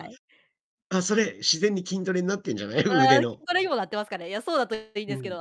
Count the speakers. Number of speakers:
two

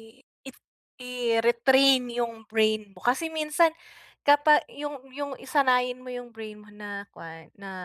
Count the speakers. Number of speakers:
one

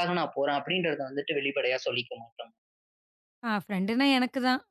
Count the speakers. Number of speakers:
two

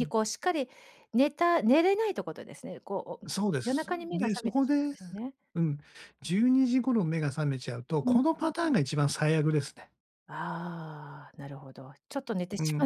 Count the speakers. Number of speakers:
two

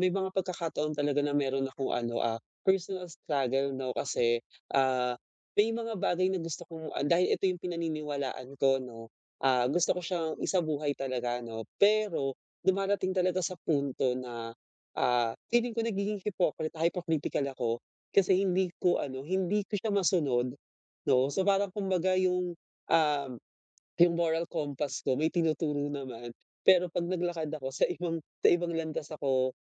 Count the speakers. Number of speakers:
one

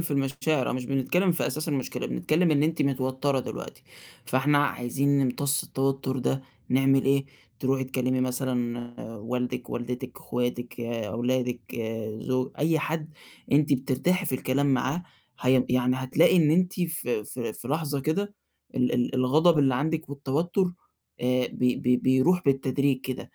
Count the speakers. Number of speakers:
one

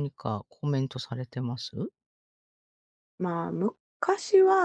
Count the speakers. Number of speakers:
two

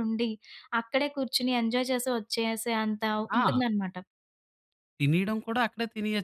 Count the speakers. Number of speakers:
two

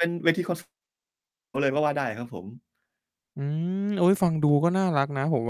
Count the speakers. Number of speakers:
two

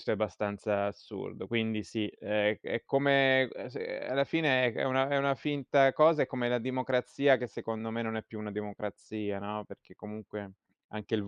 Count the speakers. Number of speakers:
one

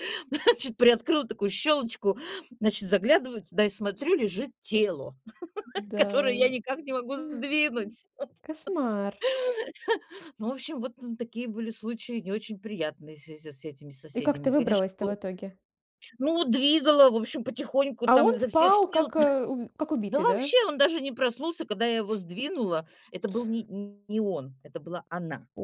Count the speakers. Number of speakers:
two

